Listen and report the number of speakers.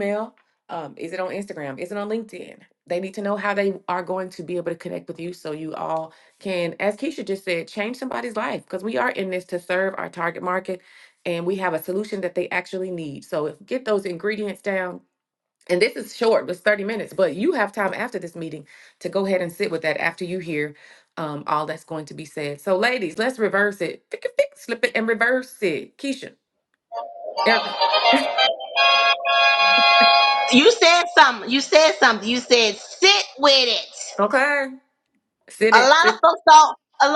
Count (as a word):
two